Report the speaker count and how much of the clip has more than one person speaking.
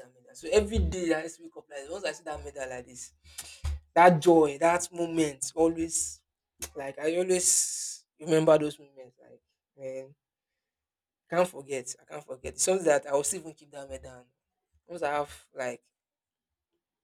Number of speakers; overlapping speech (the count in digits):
1, no overlap